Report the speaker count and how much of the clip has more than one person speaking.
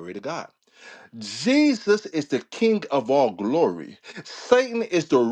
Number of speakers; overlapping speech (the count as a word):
one, no overlap